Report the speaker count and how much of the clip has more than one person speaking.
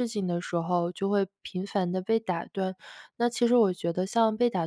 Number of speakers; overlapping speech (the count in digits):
1, no overlap